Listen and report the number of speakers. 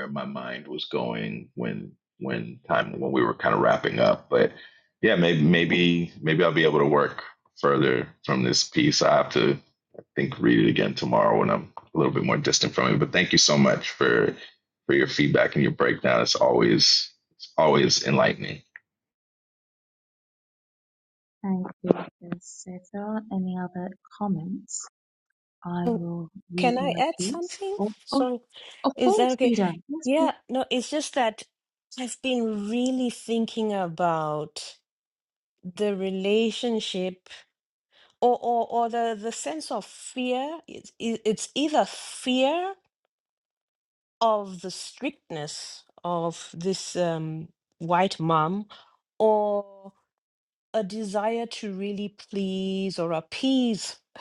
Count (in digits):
3